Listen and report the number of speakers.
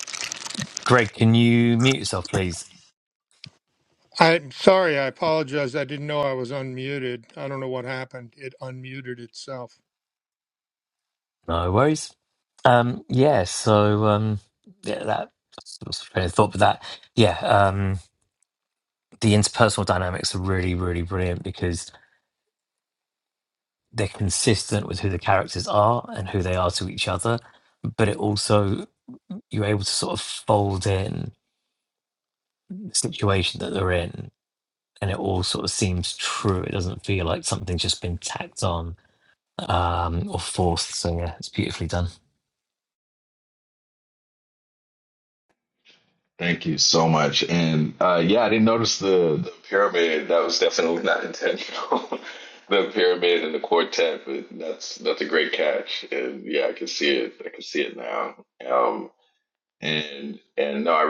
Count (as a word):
three